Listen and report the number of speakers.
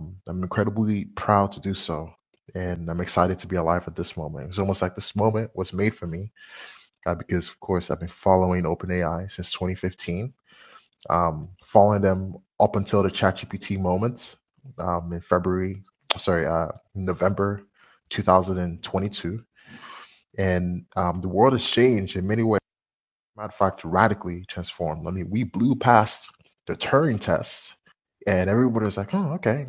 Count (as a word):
one